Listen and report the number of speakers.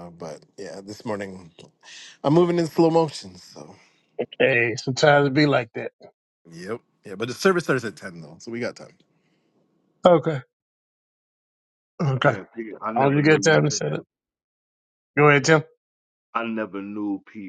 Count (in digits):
3